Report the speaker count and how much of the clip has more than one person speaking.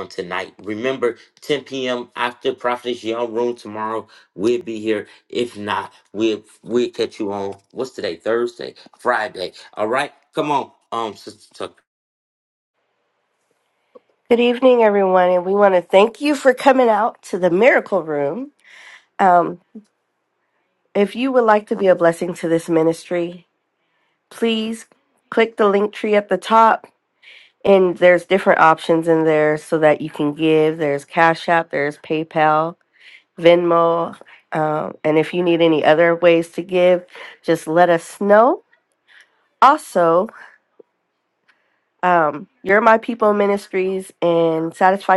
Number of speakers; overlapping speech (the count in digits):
2, no overlap